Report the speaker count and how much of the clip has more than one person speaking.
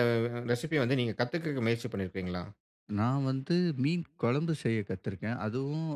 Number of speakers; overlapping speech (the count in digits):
2, no overlap